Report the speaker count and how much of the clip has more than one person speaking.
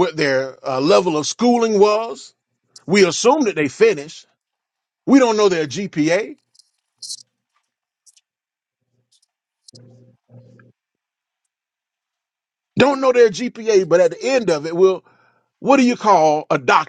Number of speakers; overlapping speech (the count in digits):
1, no overlap